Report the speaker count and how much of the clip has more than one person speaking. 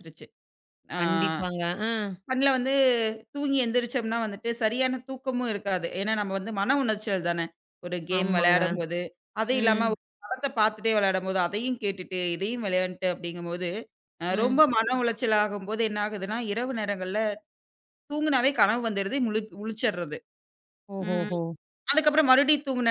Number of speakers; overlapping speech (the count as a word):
two, about 7%